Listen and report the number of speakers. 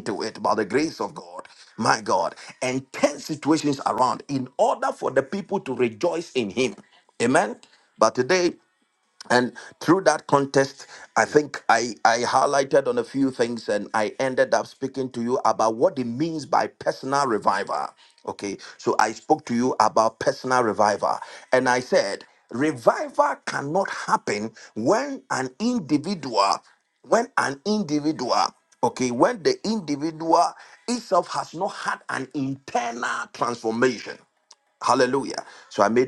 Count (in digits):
1